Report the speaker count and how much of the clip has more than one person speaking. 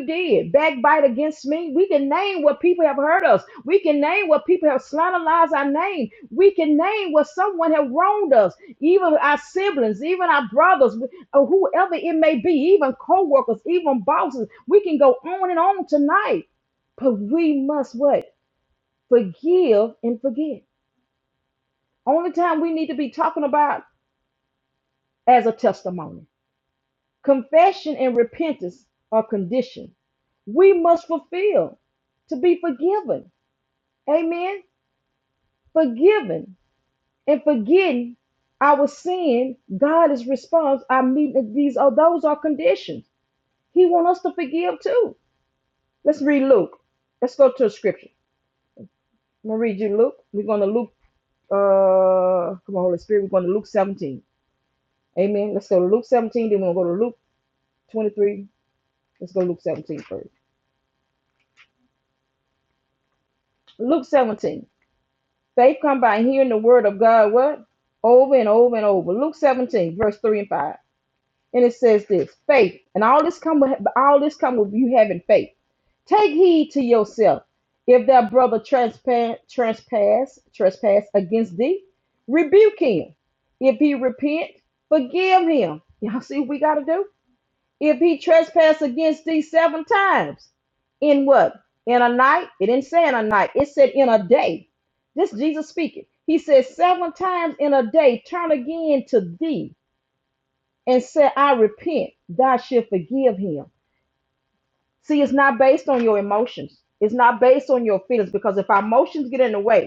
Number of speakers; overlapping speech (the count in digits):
1, no overlap